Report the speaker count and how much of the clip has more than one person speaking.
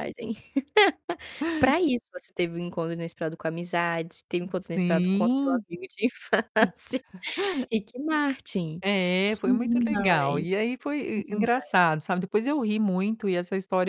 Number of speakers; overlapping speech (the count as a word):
two, about 19%